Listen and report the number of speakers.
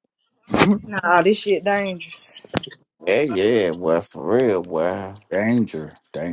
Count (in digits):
3